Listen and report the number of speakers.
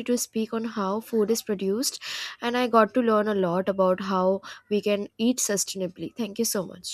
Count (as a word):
one